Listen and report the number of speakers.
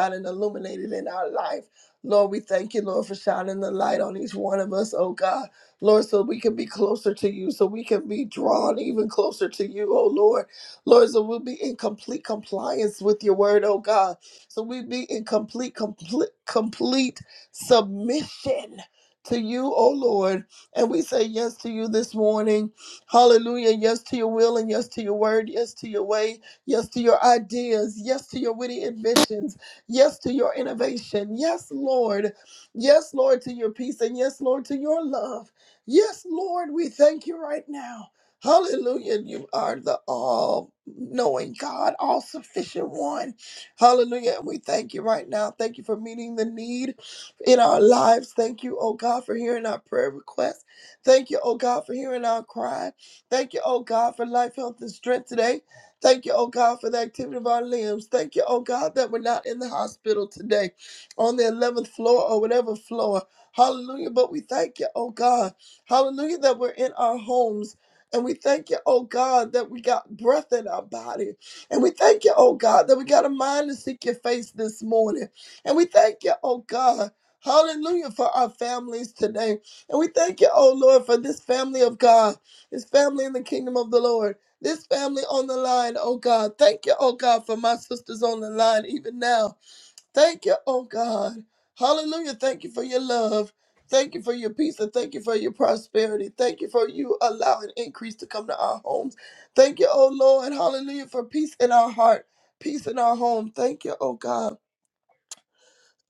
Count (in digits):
1